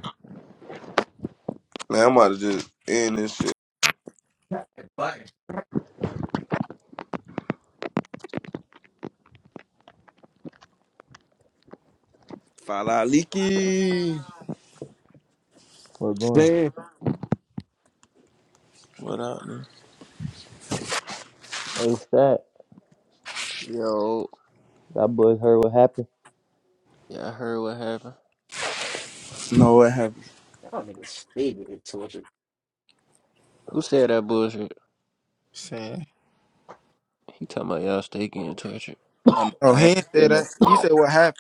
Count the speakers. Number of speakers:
six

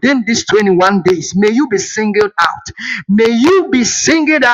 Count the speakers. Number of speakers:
one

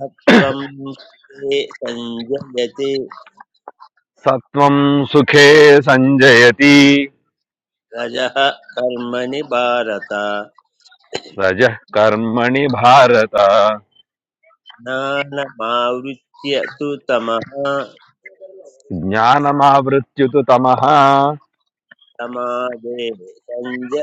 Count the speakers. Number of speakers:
two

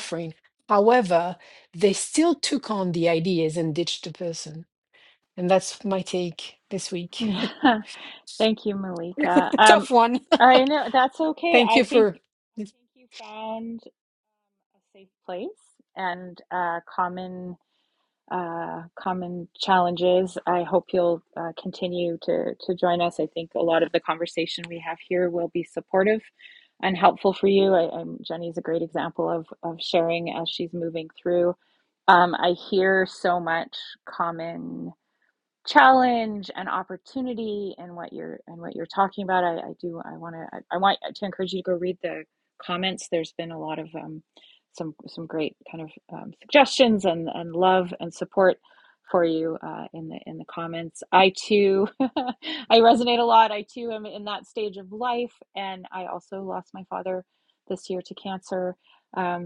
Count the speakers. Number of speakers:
two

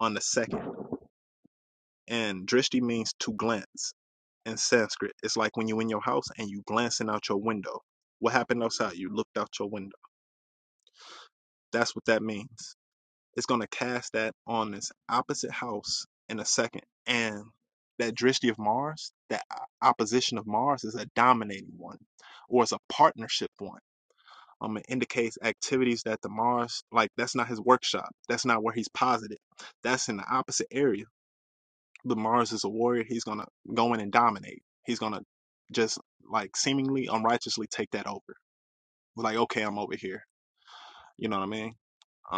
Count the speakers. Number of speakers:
one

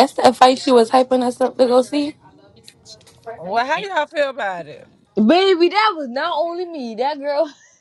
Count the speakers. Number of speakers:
three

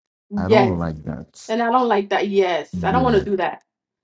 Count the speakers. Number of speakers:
two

